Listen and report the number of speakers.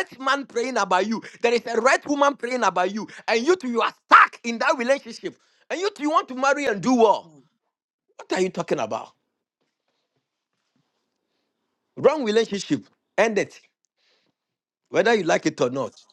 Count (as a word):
one